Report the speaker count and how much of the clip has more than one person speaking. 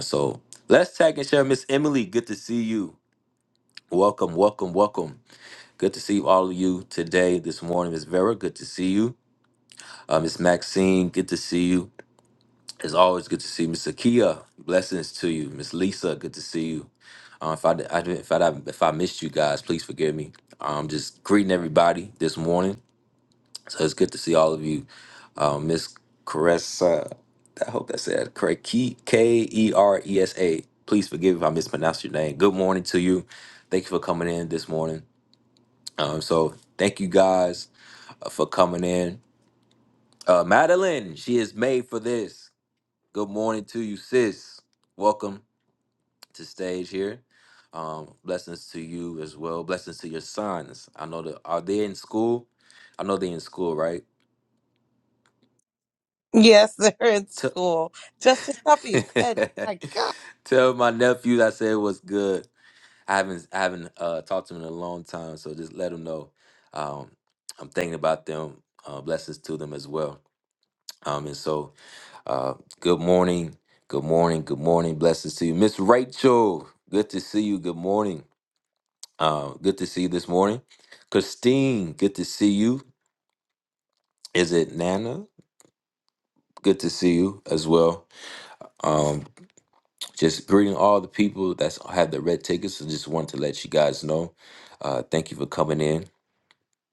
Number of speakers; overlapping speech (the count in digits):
2, no overlap